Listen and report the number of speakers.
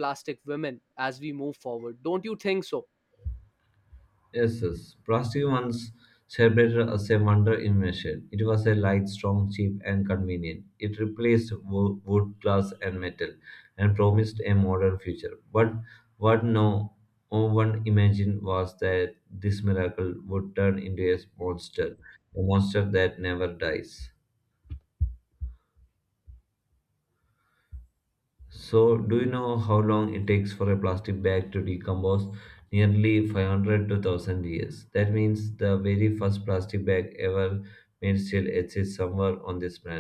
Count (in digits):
2